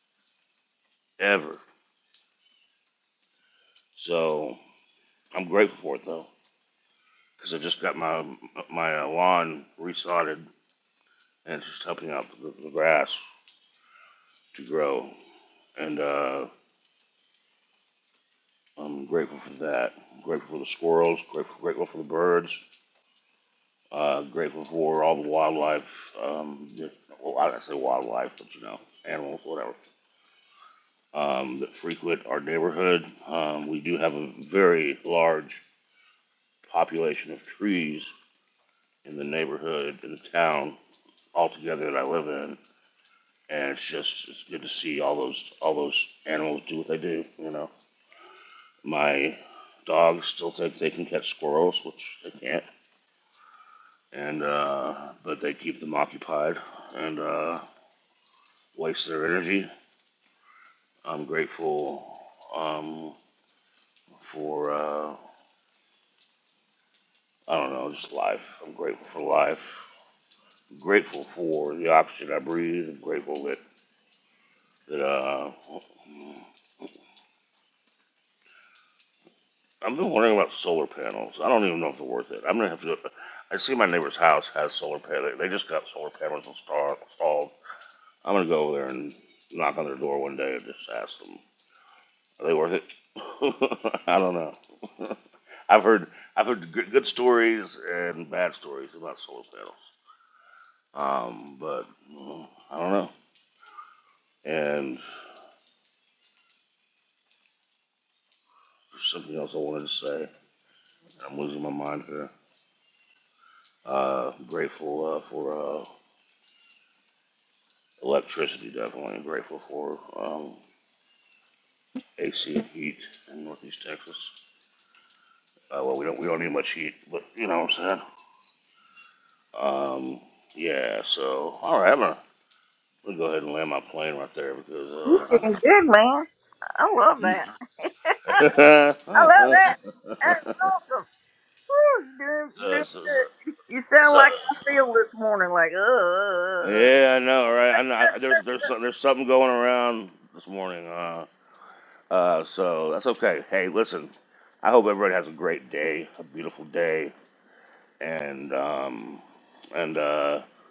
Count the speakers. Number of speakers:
two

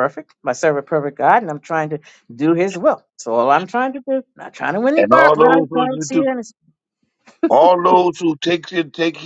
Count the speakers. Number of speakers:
two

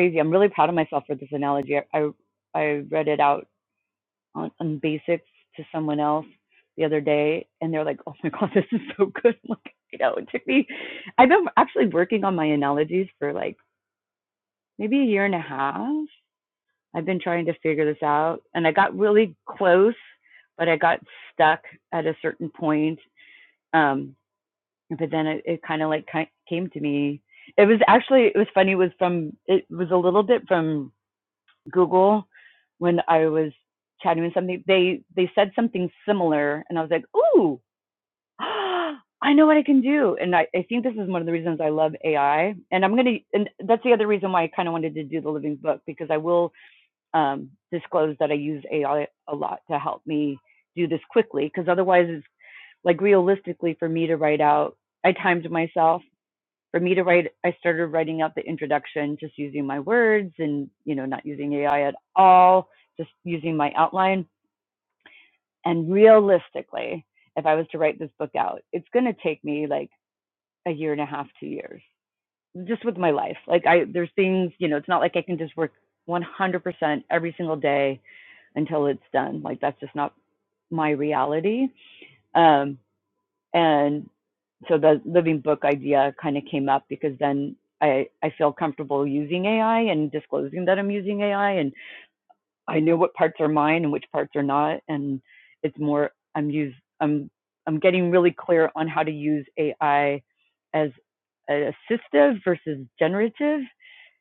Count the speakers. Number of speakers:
one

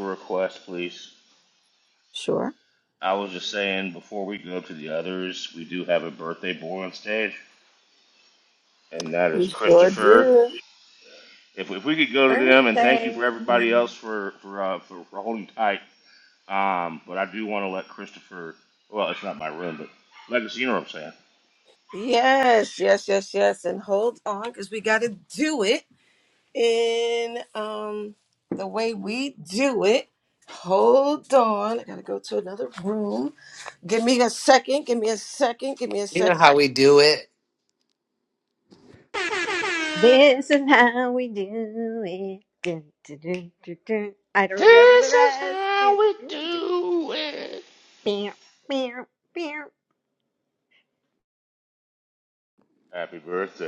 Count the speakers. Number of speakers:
four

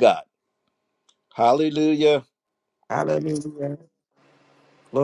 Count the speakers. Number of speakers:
two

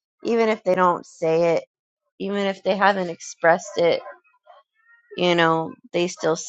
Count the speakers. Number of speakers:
one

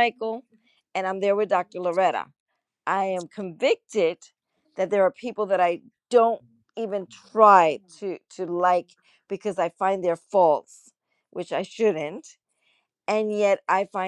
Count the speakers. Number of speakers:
one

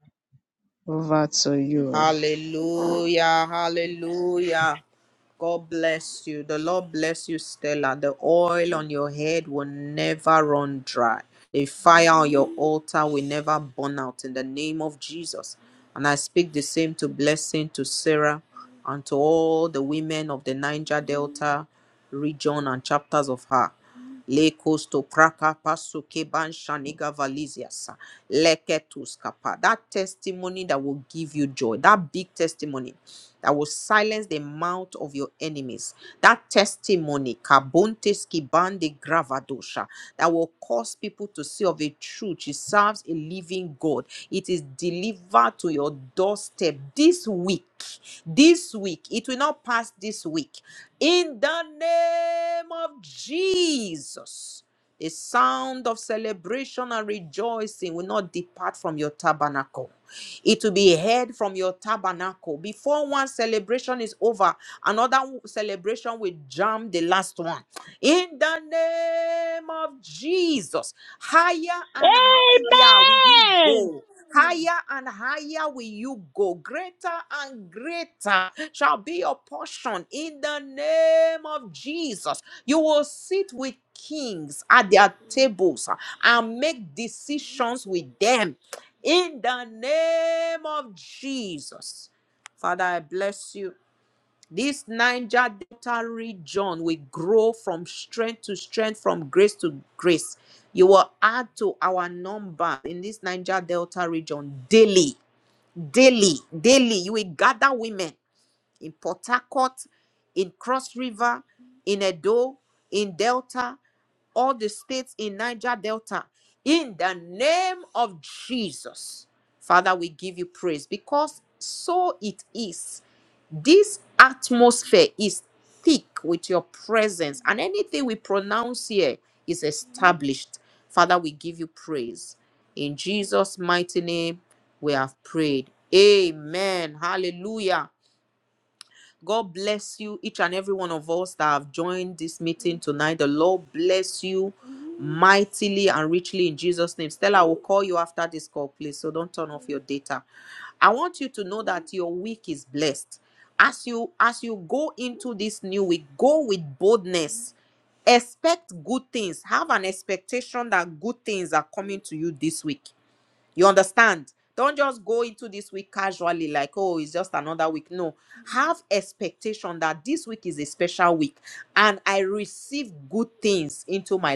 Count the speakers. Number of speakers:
two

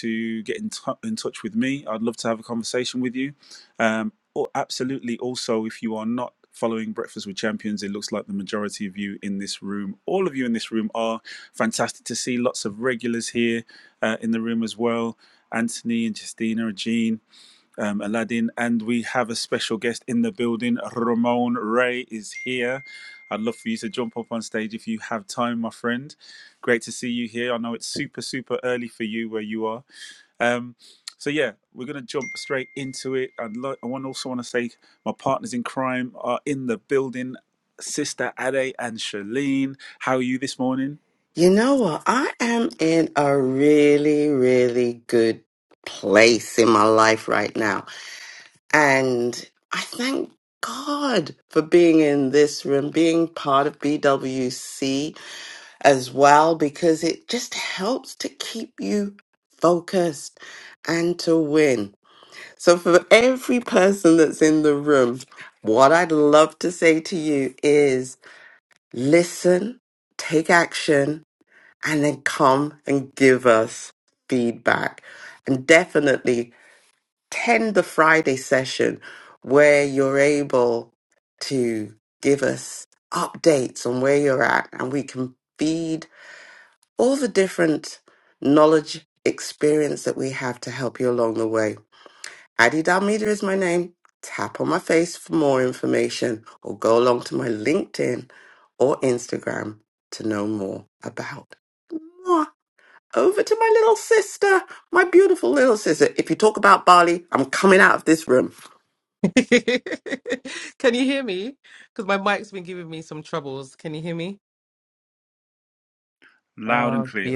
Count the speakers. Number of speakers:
three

